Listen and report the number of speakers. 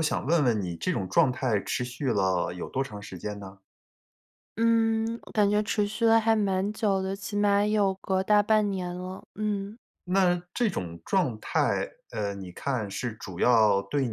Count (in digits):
2